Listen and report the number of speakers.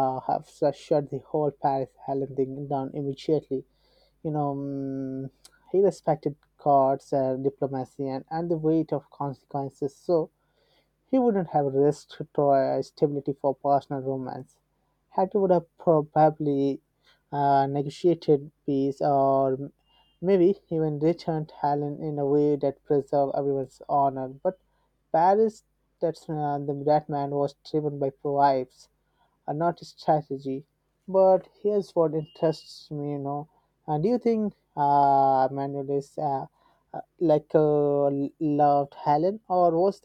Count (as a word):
one